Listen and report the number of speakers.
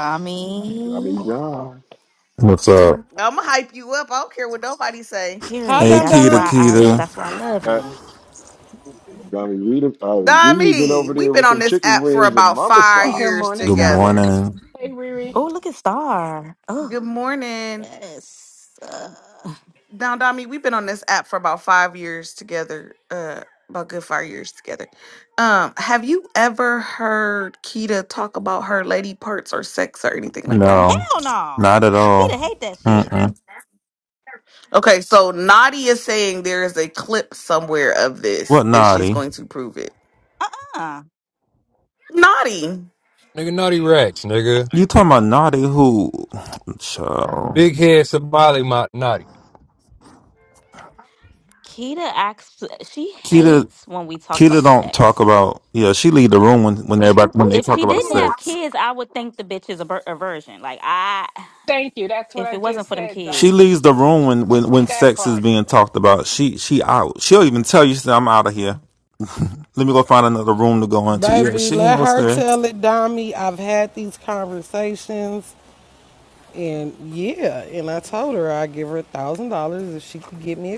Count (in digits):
7